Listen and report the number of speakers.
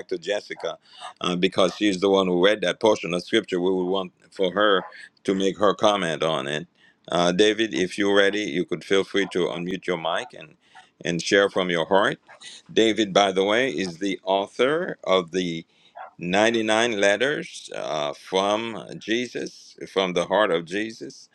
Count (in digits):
1